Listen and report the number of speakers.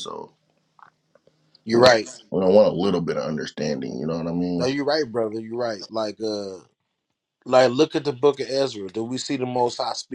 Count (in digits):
2